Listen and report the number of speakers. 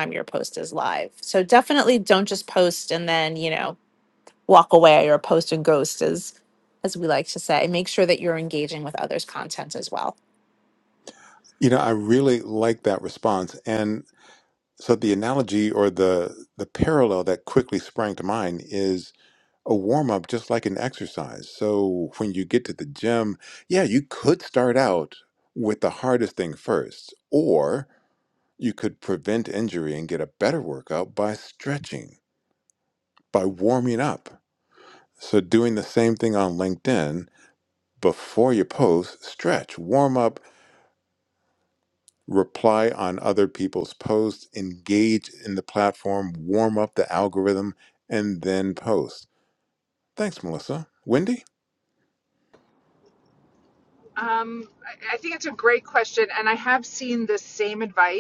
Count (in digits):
3